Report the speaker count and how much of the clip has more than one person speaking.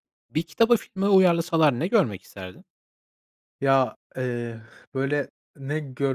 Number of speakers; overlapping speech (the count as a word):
two, no overlap